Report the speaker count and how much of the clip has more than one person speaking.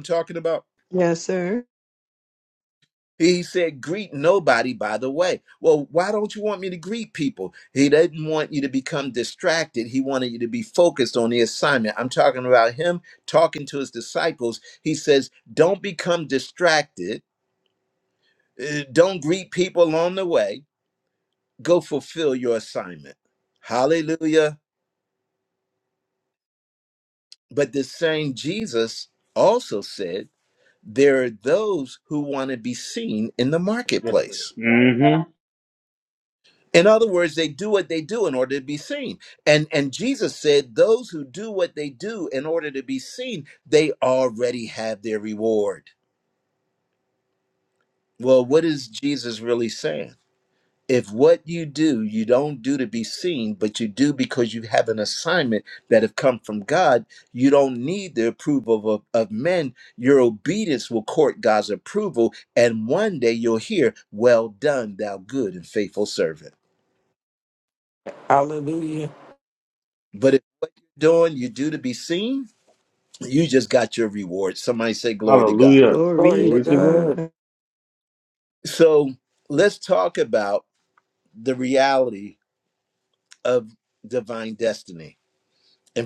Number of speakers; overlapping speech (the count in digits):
4, about 2%